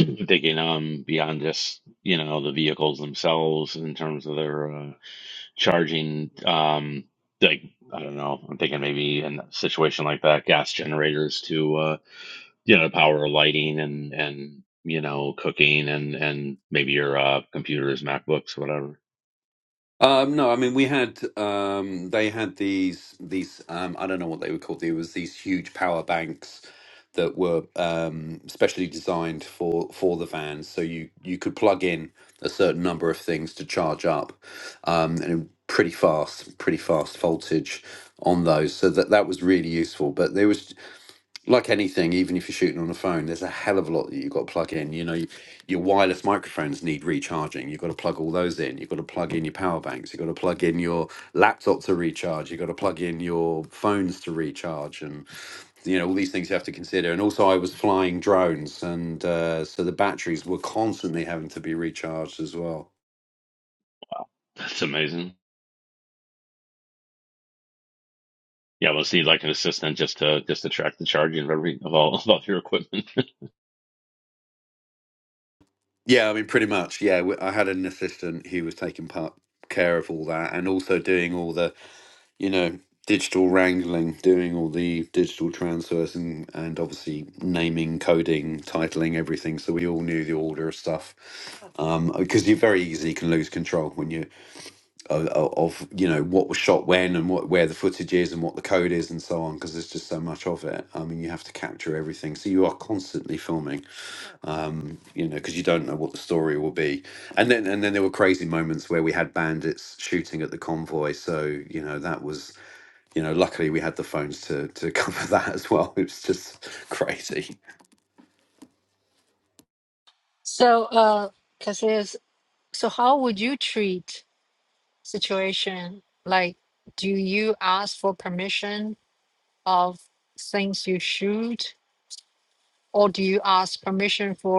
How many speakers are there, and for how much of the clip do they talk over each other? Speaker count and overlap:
3, no overlap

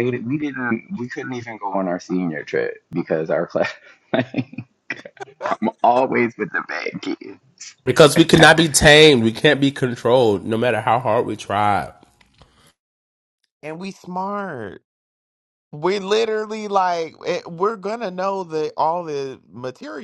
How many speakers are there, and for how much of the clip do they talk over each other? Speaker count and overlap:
3, no overlap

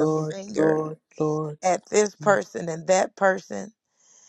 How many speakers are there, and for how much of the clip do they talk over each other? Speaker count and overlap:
2, about 22%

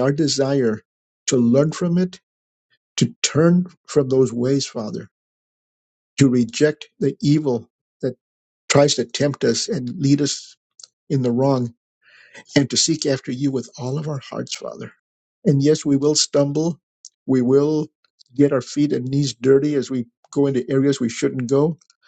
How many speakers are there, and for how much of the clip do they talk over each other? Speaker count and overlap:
1, no overlap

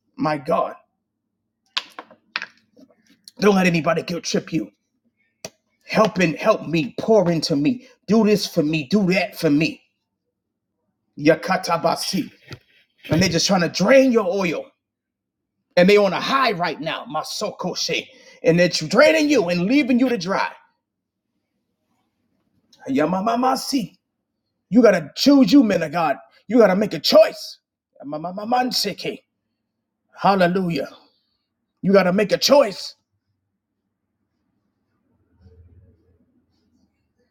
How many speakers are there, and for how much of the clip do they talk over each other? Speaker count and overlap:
1, no overlap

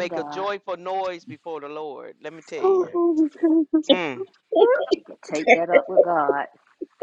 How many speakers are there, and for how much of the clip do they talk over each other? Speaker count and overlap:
3, about 12%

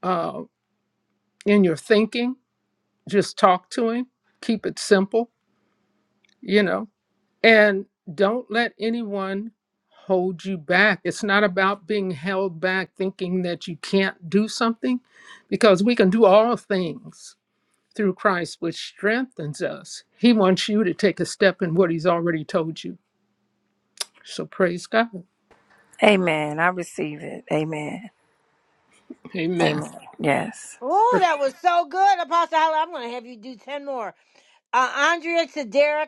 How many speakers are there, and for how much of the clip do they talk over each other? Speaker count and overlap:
3, about 1%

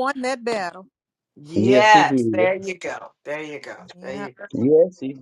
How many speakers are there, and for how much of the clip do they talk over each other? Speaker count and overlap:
3, about 21%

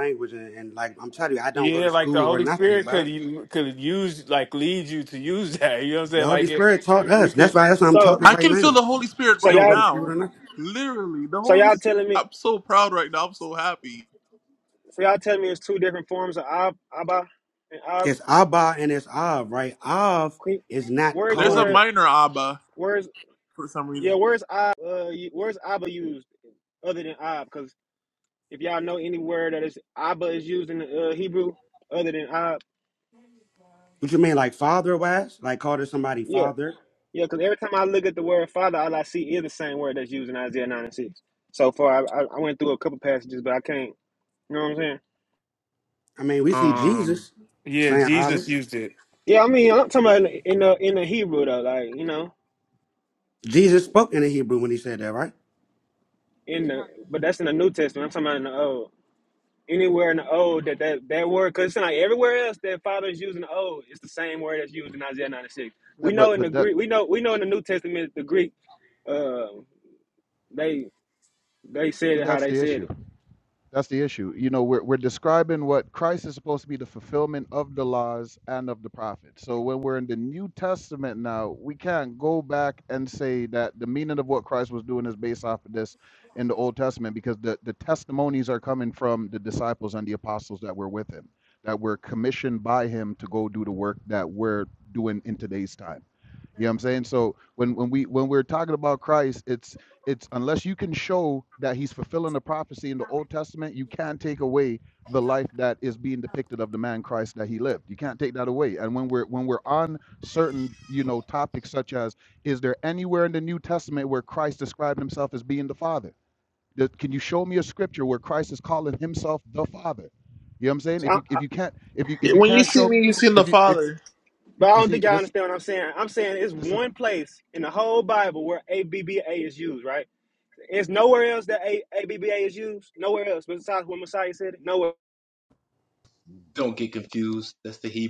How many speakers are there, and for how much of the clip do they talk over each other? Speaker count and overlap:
6, about 7%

